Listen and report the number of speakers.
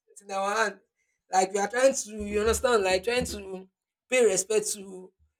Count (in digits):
1